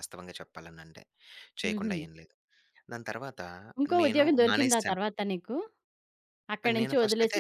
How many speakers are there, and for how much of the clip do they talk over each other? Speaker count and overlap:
two, about 28%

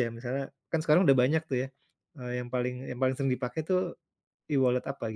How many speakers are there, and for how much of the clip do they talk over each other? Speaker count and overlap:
one, no overlap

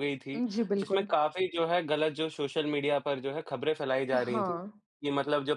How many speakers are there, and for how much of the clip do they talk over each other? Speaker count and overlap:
two, about 14%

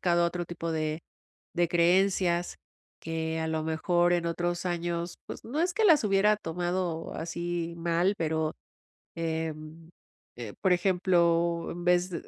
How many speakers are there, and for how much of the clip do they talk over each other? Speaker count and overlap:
one, no overlap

